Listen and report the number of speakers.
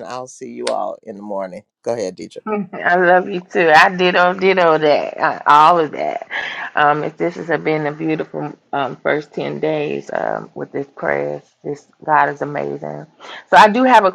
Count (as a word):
two